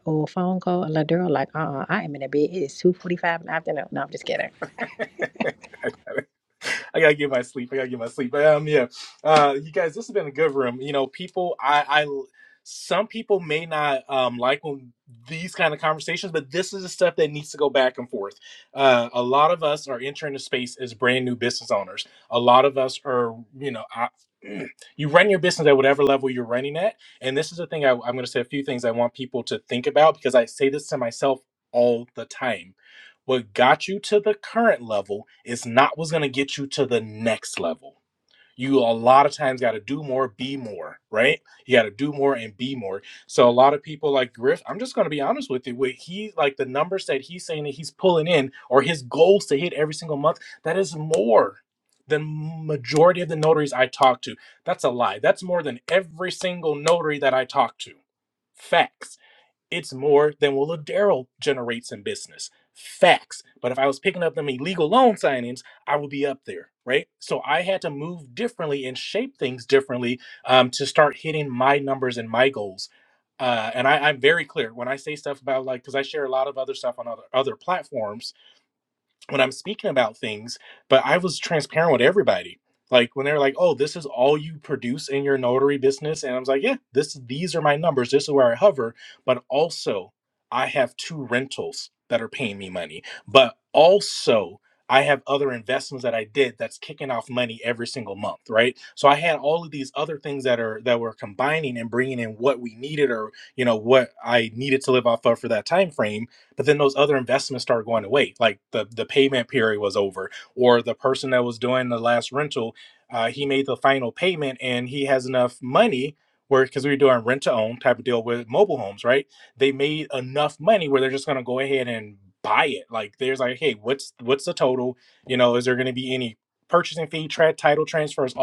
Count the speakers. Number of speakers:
2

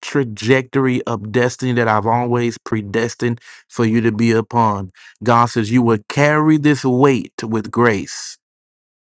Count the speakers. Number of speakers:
1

